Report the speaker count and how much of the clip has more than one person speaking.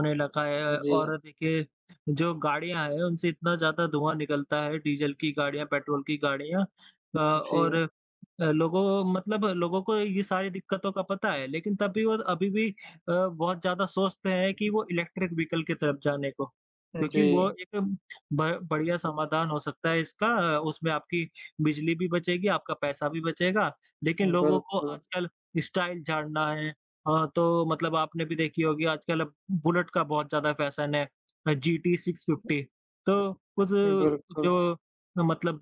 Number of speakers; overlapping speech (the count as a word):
two, about 5%